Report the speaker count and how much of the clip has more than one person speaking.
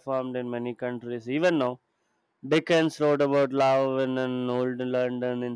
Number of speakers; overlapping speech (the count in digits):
1, no overlap